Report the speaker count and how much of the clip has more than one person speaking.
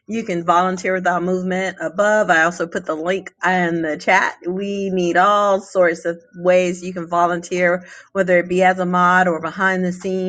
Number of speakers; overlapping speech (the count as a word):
one, no overlap